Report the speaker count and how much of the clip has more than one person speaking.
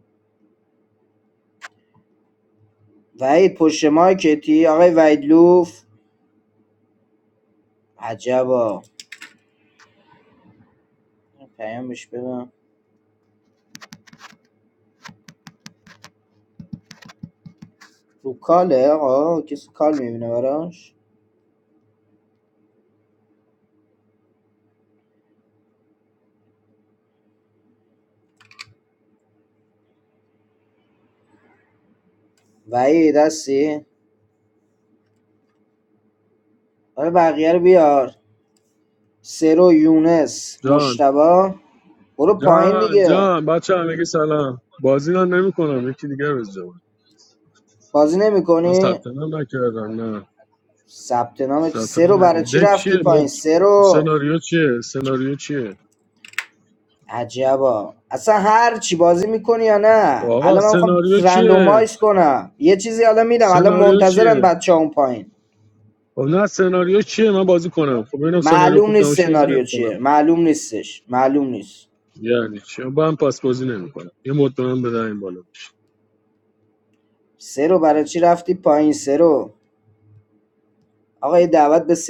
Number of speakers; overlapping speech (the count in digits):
2, about 9%